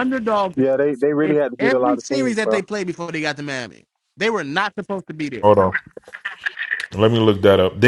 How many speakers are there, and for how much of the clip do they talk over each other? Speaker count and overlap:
3, about 19%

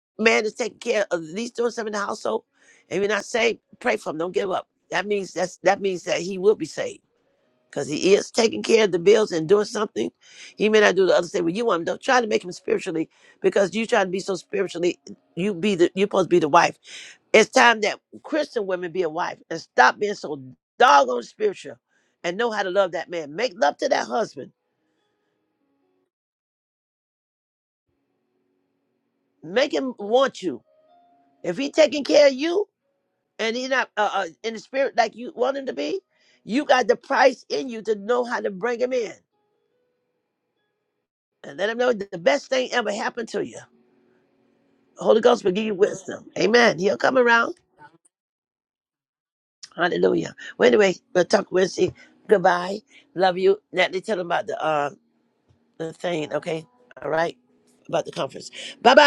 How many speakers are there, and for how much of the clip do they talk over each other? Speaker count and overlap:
1, no overlap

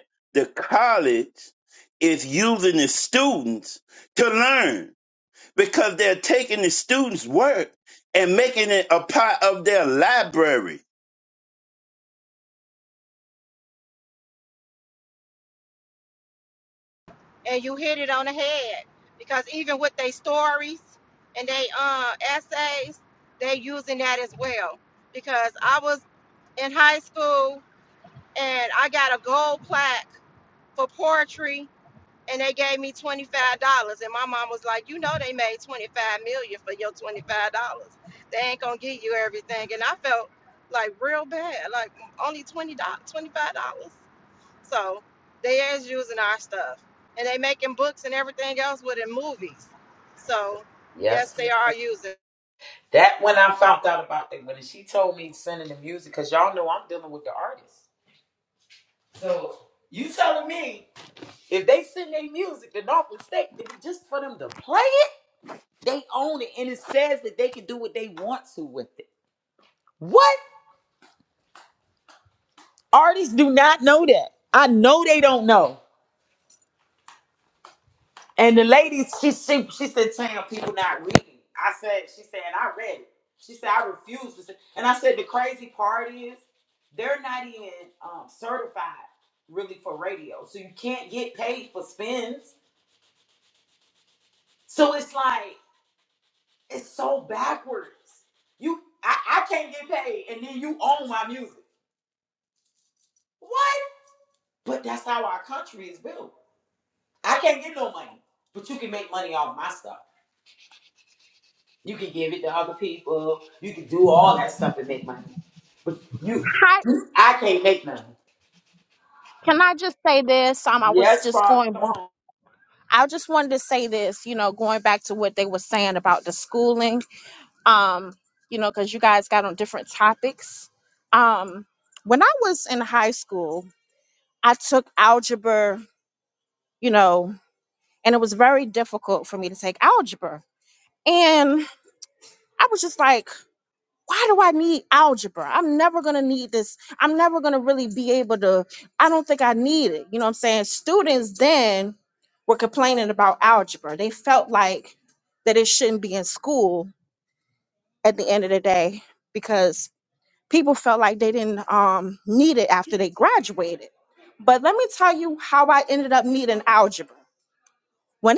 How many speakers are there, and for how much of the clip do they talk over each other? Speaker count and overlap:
4, about 1%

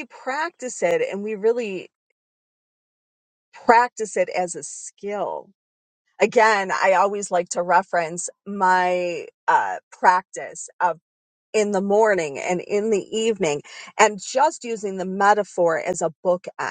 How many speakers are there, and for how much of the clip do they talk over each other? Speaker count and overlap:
1, no overlap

